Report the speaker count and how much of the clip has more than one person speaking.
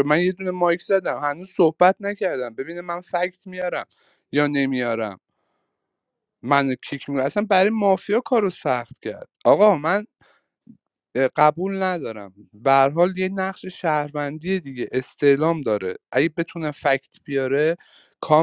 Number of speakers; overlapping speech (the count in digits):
1, no overlap